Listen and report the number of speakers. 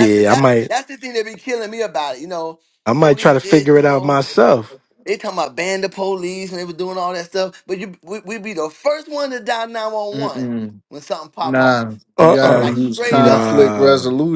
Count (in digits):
3